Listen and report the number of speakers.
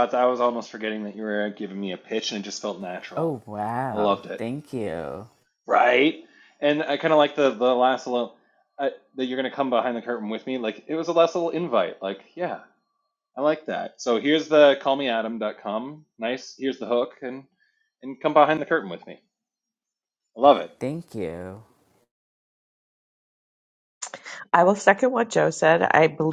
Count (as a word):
three